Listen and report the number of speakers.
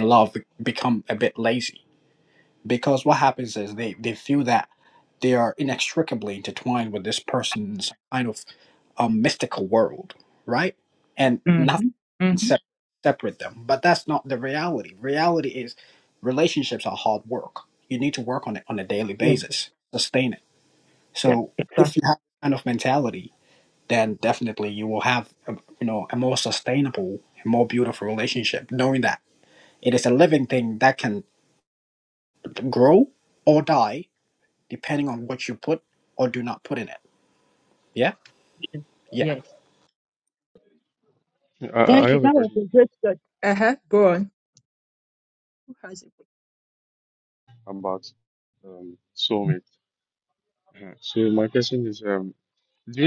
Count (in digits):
3